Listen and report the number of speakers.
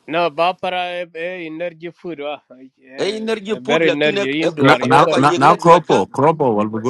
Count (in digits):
3